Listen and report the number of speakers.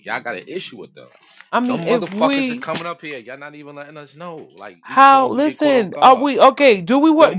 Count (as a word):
two